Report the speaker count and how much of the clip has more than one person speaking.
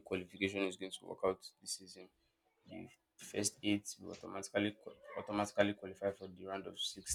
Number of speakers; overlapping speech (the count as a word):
one, no overlap